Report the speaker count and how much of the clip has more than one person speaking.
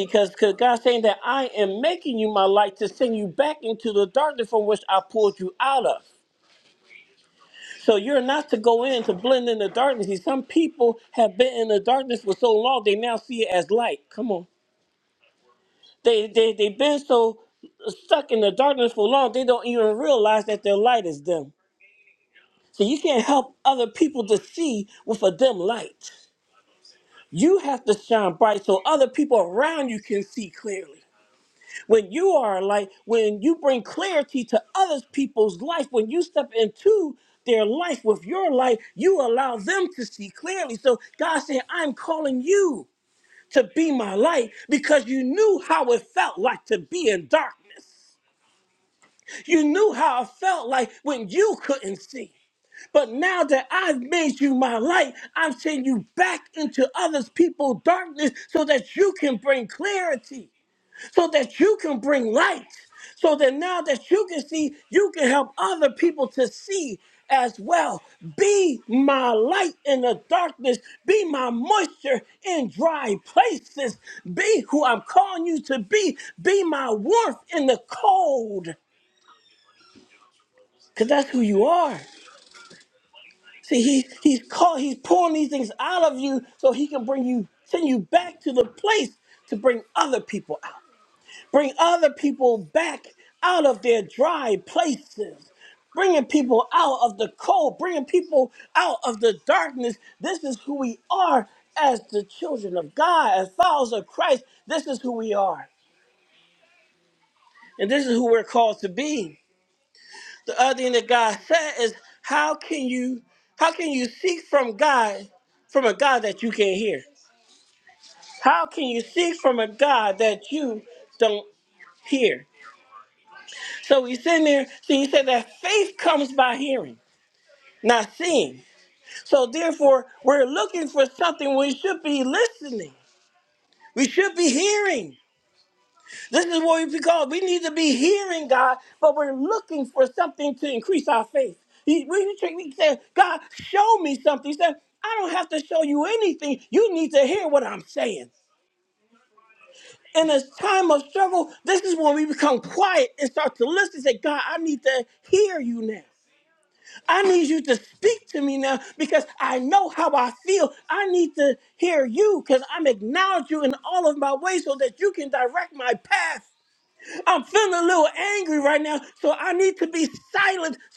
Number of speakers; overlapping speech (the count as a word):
one, no overlap